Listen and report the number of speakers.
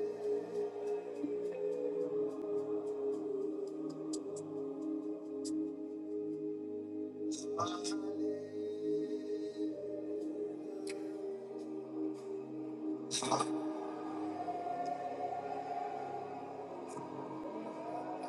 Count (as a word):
zero